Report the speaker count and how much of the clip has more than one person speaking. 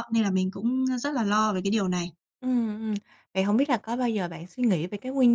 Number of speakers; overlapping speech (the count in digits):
2, about 2%